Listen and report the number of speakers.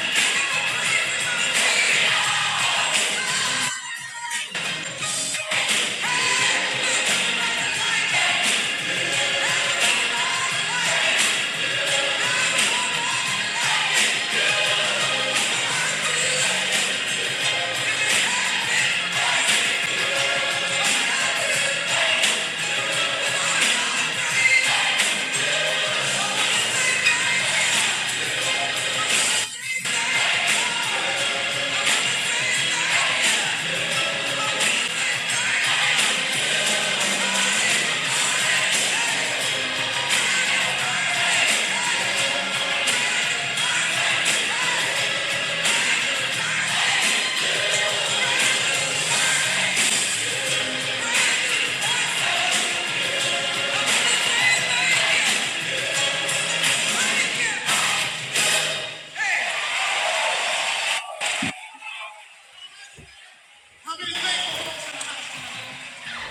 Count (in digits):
0